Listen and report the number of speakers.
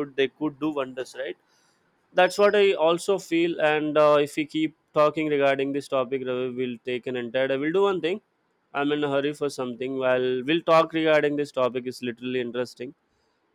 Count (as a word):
one